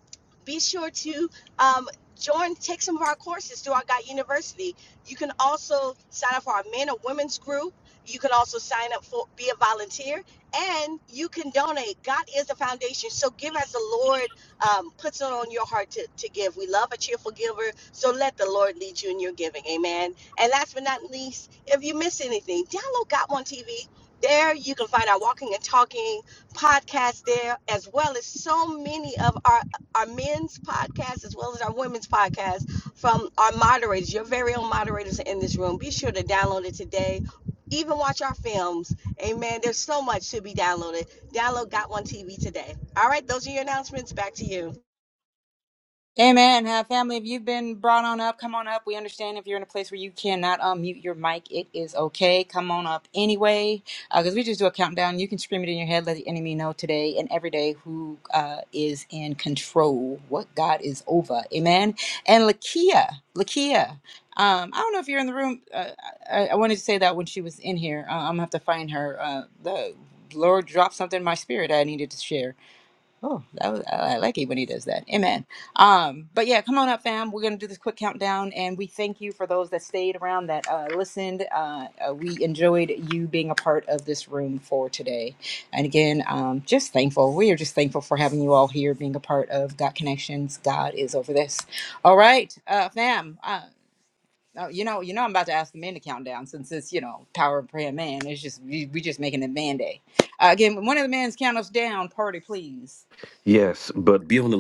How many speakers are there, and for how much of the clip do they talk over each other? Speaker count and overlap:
3, no overlap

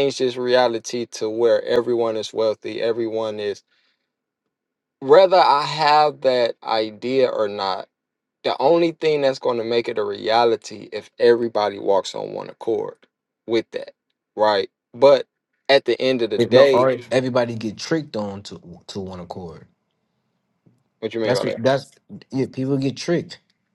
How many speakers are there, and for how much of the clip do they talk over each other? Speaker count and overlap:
2, about 4%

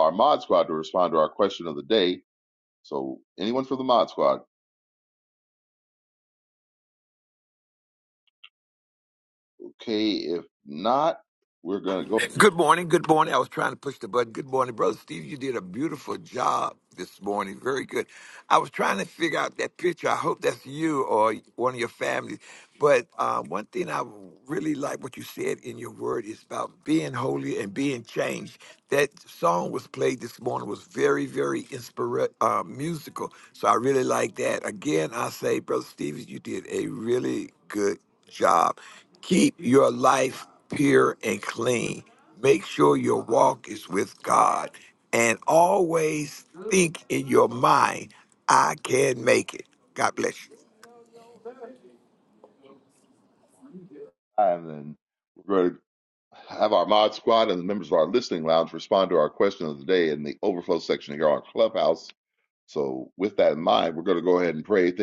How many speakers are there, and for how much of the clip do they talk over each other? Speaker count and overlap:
2, no overlap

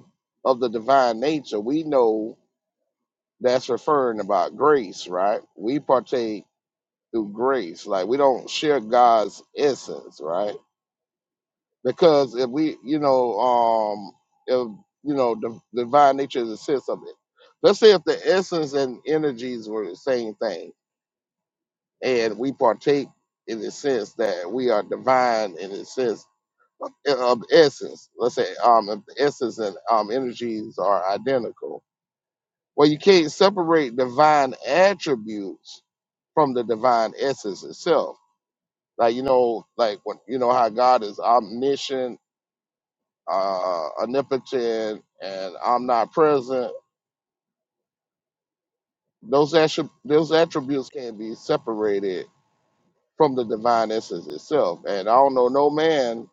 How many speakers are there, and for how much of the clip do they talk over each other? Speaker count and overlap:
1, no overlap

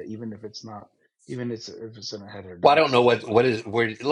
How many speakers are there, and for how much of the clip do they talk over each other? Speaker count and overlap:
2, about 25%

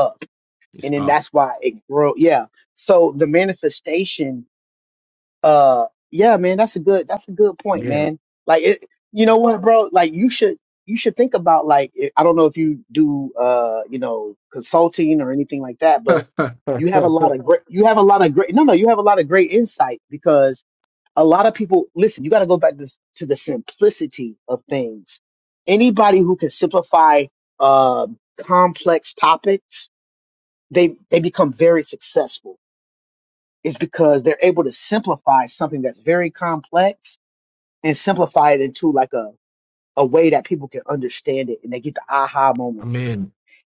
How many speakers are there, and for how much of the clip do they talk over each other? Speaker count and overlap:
2, about 2%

